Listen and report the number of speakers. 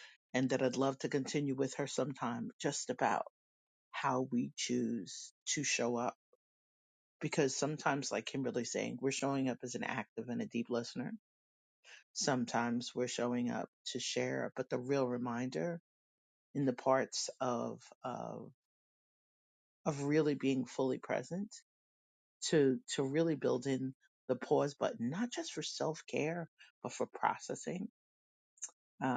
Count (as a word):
one